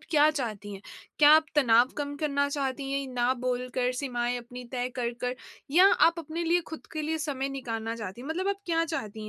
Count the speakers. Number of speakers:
1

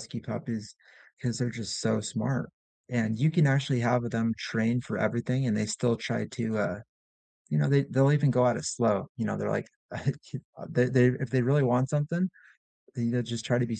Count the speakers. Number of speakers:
1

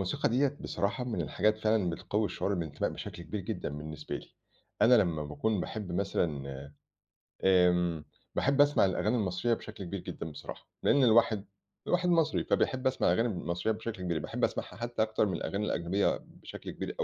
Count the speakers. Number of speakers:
1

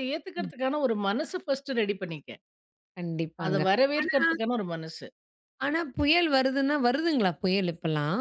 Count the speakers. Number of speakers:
2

